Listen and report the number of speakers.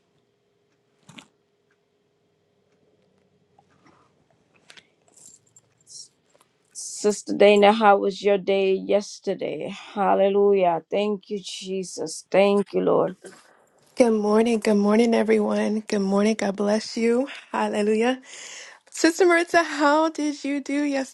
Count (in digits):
2